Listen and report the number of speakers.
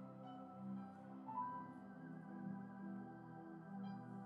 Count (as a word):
zero